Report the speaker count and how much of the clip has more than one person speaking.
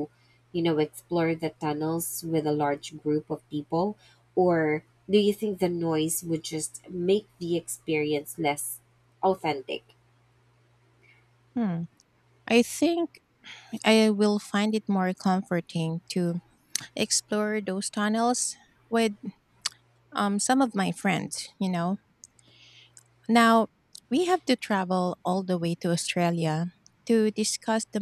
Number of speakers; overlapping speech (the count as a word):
two, no overlap